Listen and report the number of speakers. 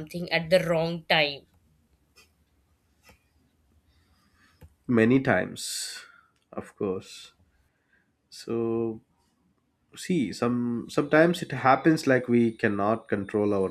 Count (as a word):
two